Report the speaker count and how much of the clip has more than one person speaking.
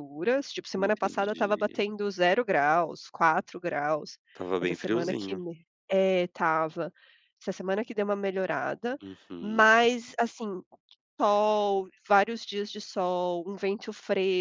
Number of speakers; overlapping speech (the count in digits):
2, about 14%